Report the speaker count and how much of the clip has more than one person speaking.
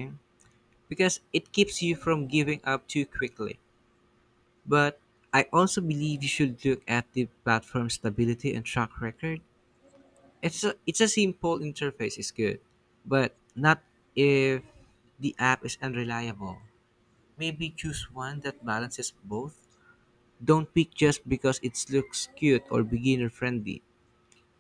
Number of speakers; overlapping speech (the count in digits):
1, no overlap